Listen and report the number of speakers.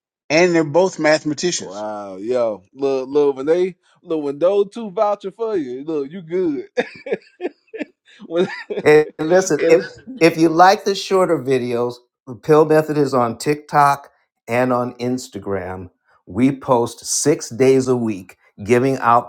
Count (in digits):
3